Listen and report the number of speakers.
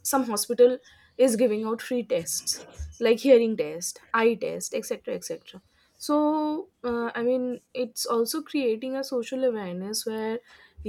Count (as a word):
one